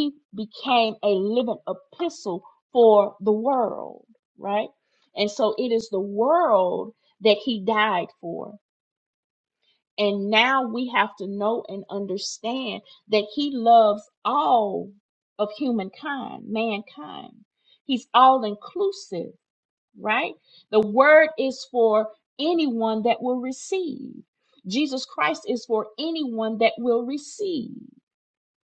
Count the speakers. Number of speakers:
1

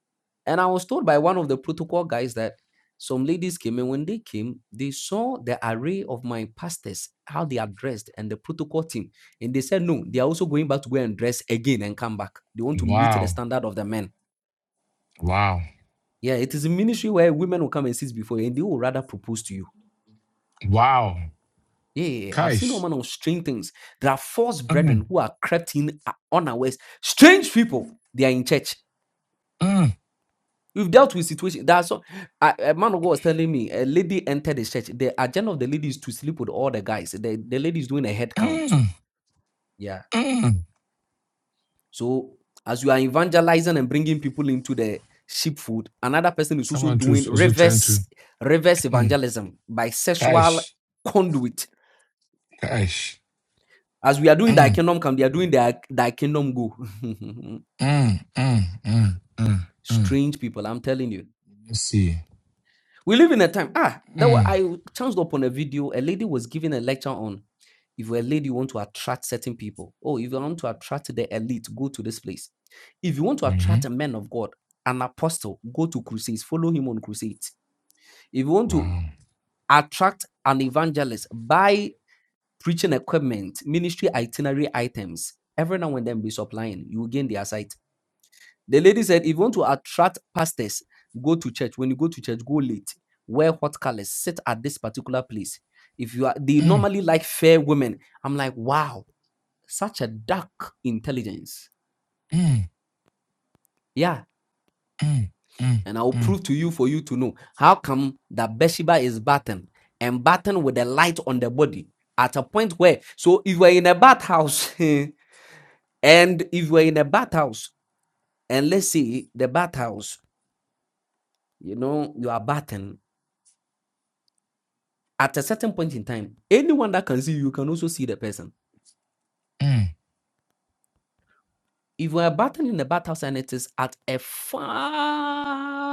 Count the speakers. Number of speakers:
2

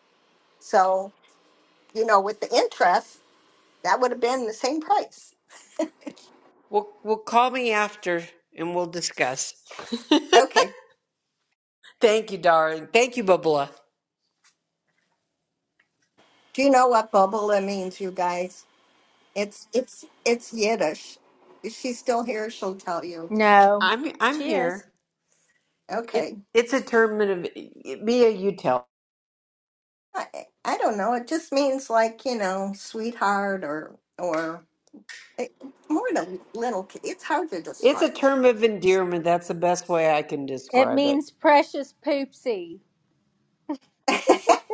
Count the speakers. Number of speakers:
3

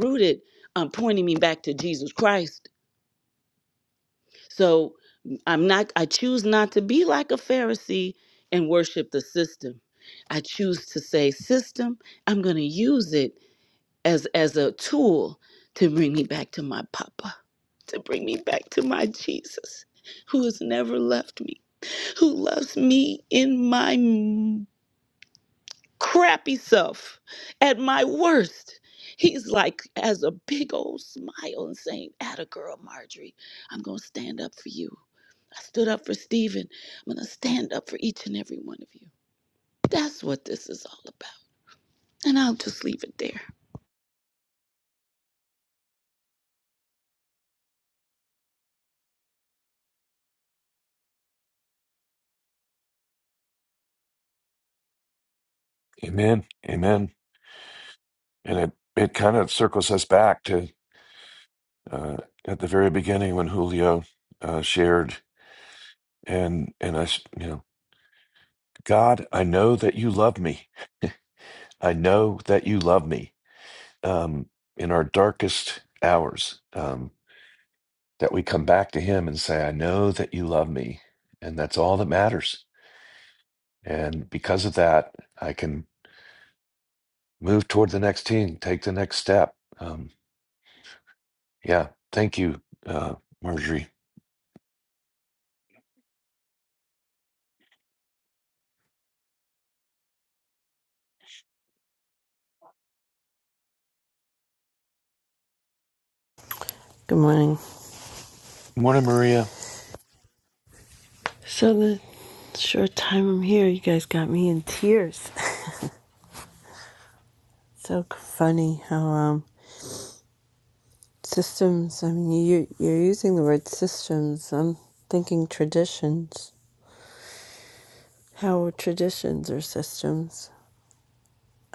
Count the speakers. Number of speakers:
3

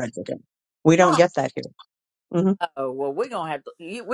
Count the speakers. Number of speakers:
2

